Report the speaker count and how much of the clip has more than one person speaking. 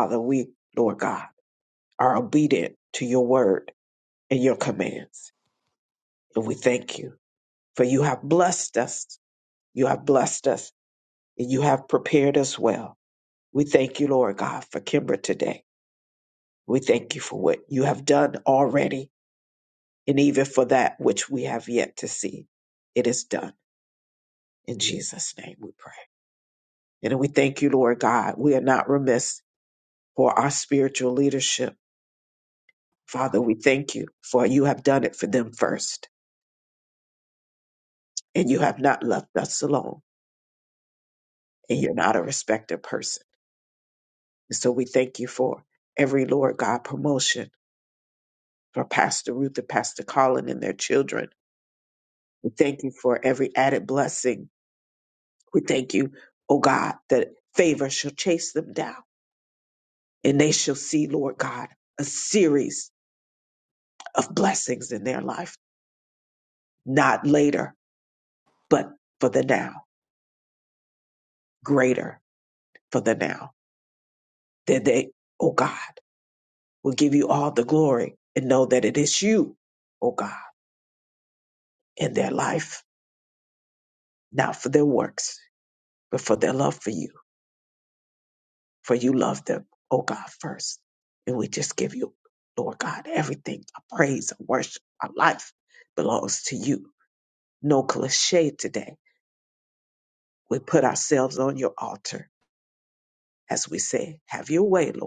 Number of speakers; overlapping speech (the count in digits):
1, no overlap